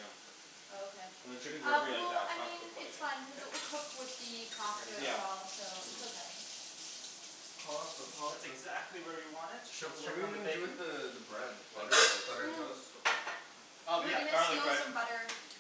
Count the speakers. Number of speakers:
4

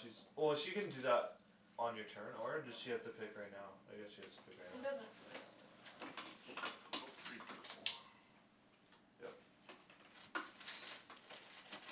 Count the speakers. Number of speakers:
3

